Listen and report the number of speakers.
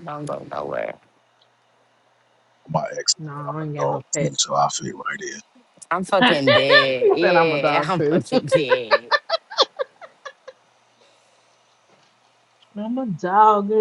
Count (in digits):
3